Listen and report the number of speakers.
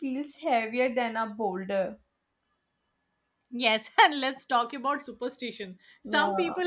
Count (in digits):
2